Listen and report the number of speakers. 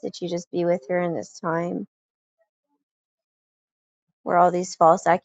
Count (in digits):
1